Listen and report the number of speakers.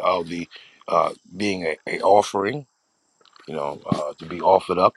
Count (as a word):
one